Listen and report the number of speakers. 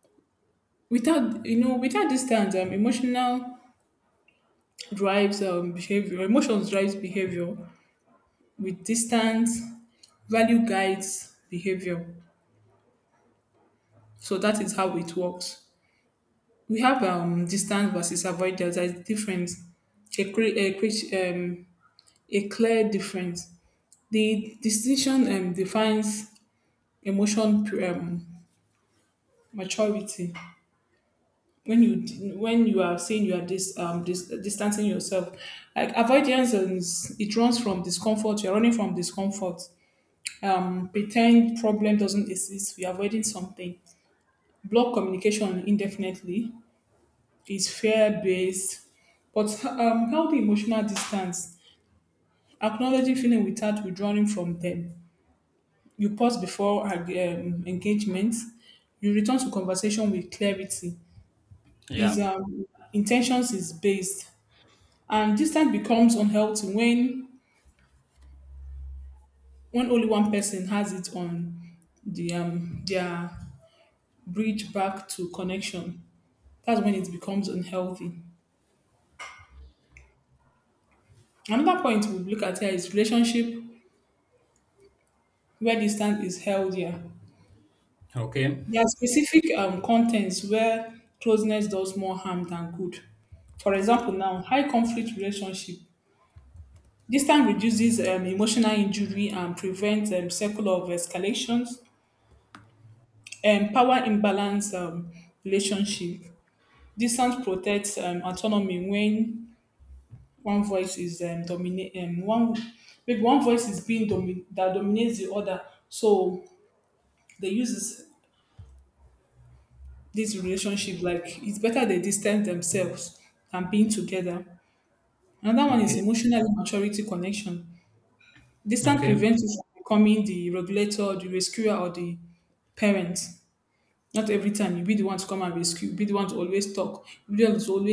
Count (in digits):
2